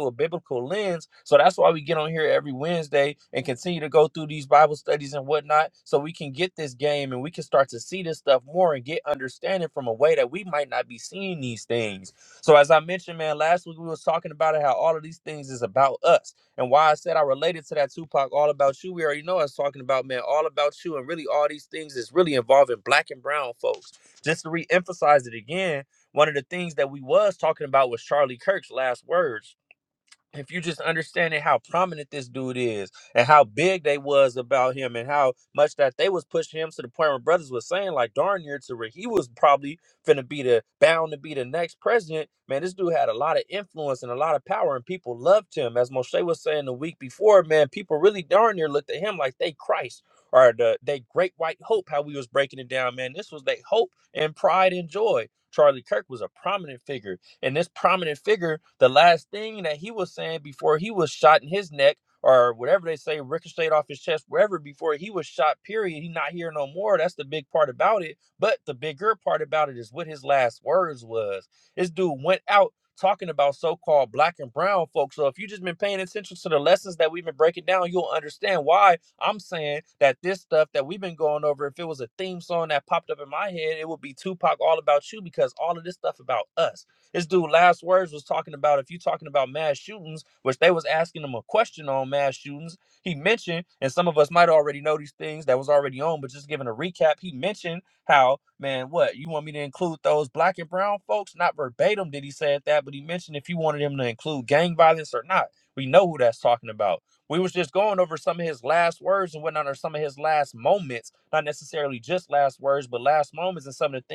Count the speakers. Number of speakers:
1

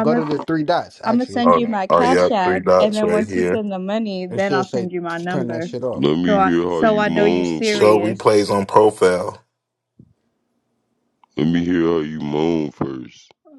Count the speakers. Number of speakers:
4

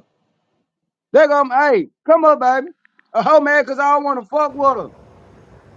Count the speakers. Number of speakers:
1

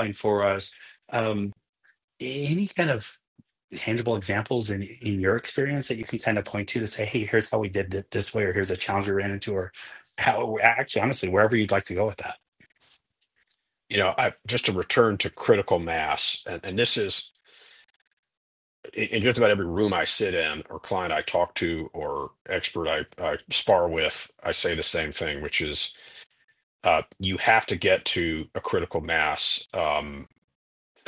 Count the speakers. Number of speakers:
2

